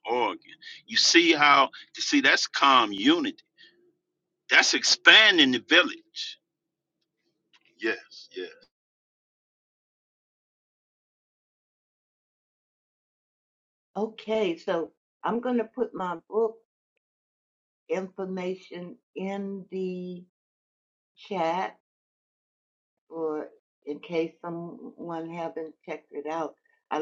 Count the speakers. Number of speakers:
2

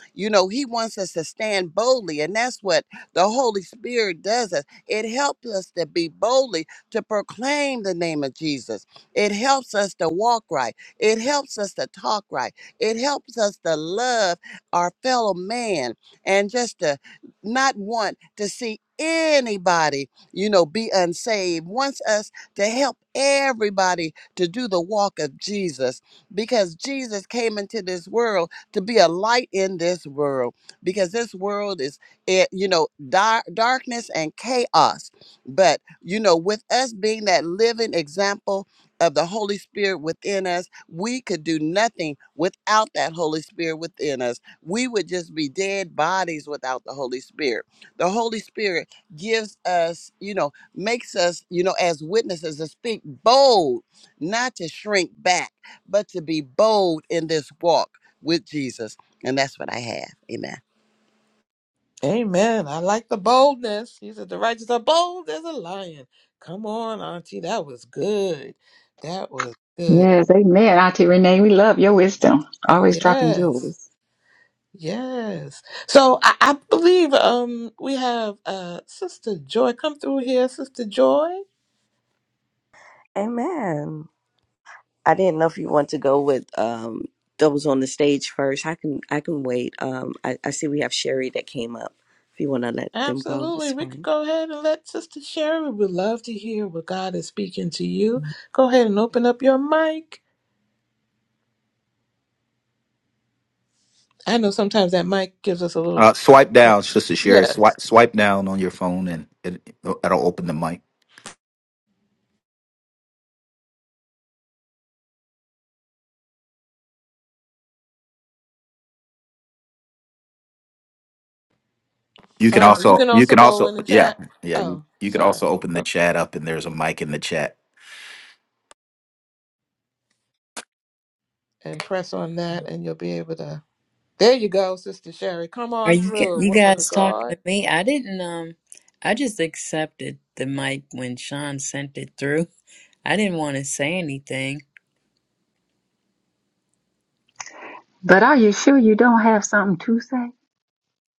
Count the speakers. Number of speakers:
6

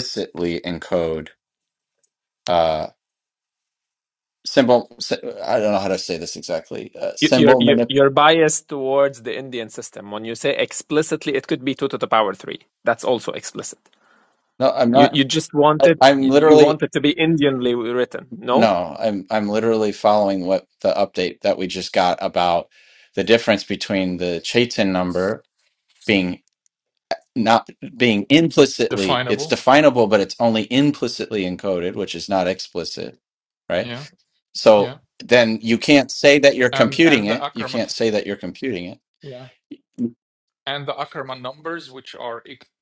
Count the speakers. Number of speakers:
3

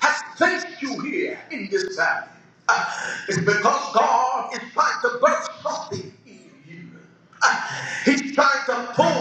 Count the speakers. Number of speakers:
1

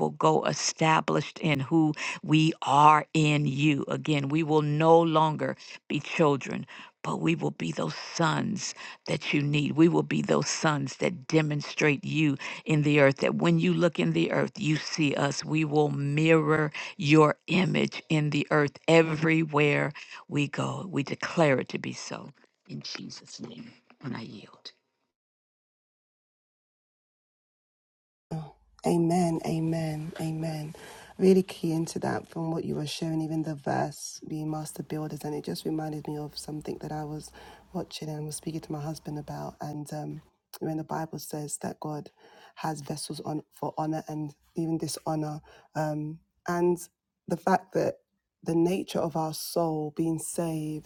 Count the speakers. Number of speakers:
2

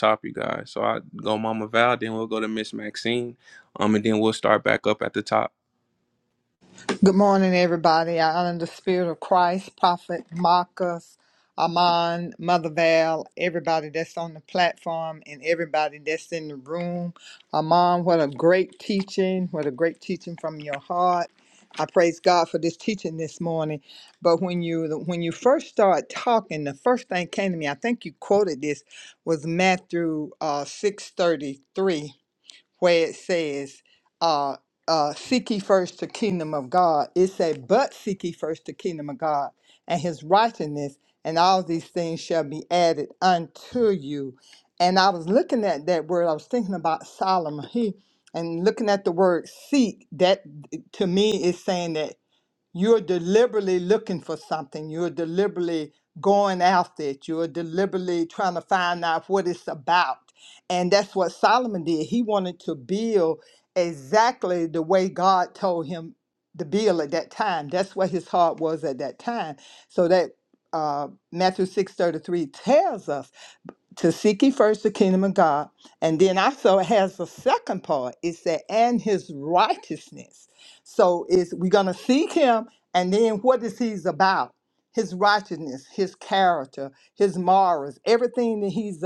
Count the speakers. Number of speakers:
2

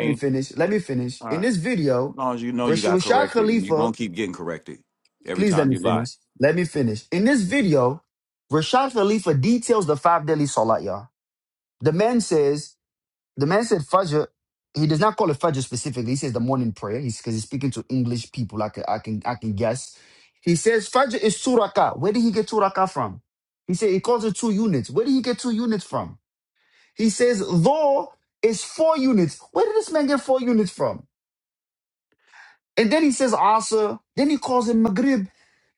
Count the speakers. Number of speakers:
2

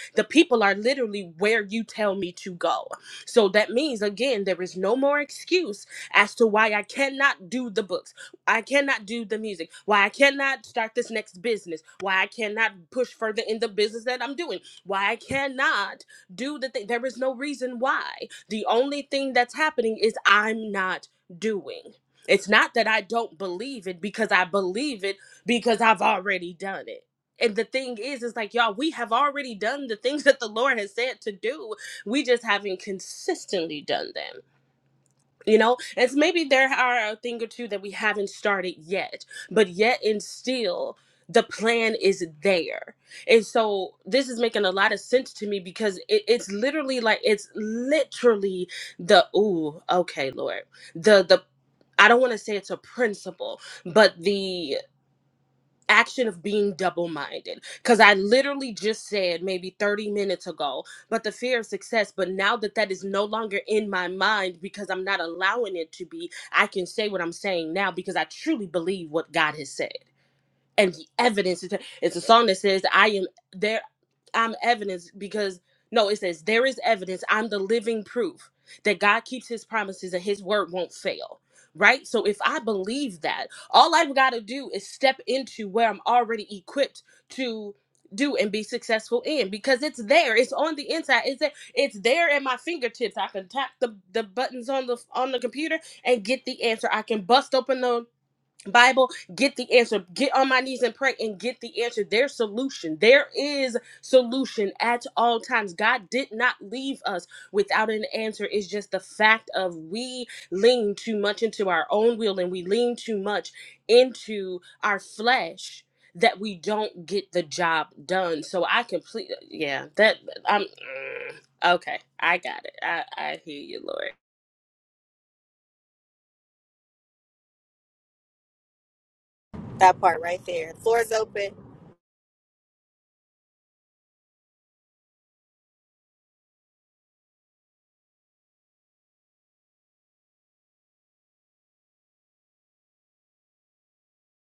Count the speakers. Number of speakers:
2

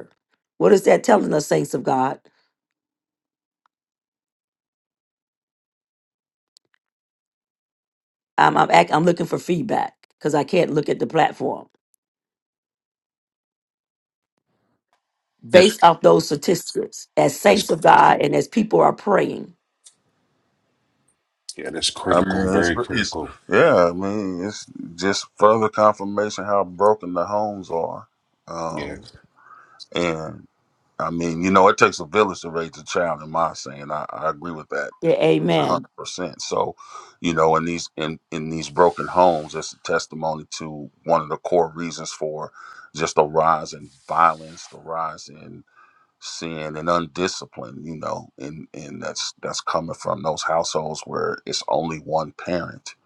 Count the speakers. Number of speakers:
3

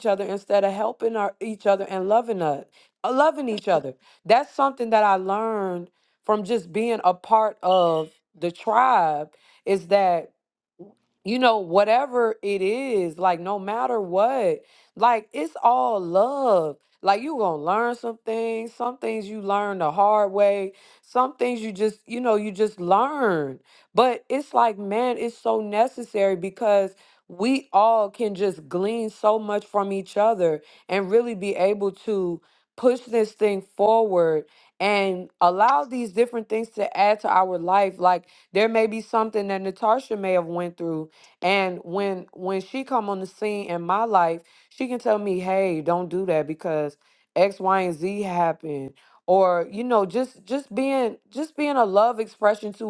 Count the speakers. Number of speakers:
1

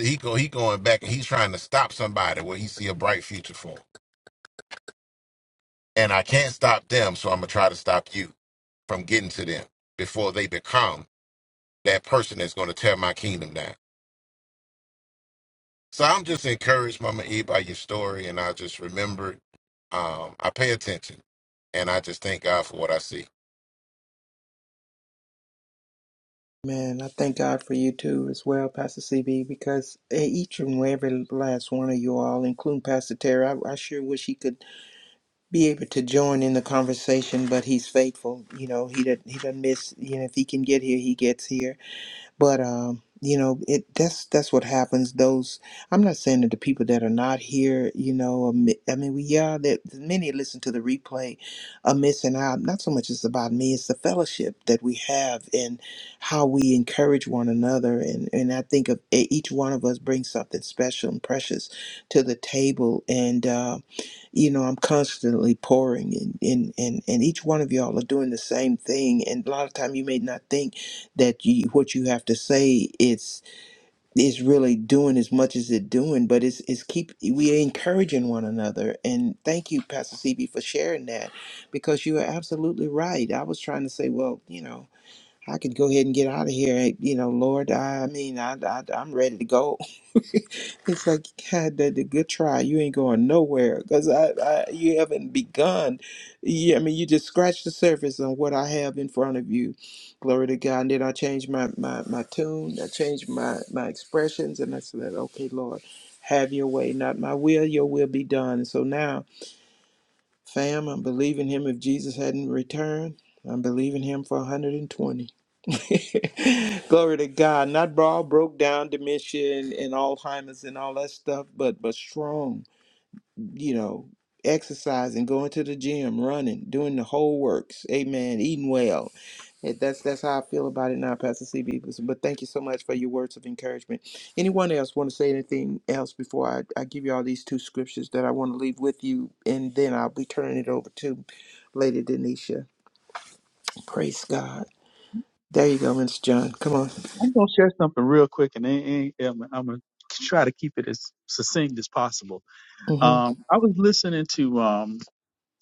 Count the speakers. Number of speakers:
3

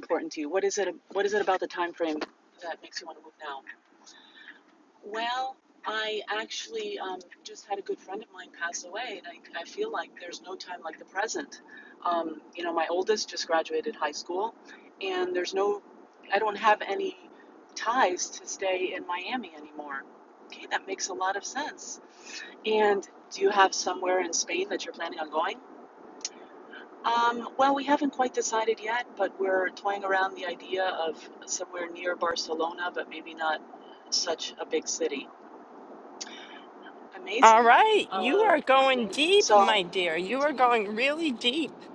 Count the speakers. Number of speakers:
2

